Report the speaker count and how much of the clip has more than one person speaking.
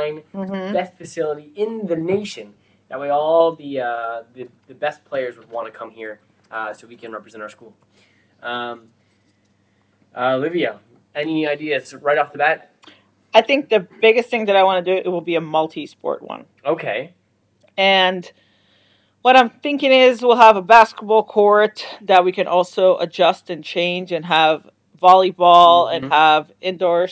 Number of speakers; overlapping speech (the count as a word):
two, about 2%